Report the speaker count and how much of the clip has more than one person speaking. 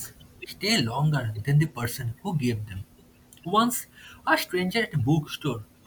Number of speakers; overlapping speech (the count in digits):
1, no overlap